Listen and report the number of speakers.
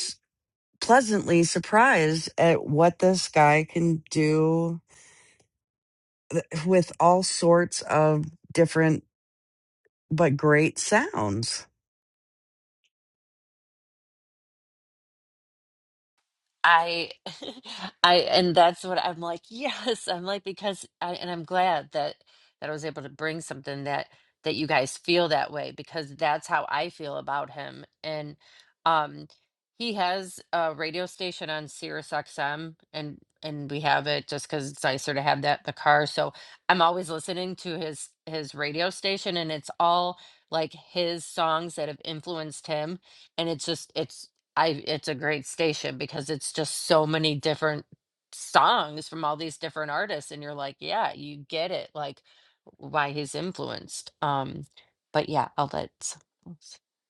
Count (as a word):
two